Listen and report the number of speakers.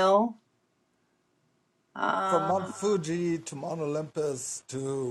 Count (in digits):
2